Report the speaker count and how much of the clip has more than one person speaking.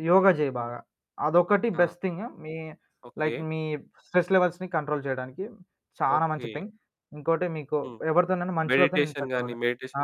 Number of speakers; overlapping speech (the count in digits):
2, about 22%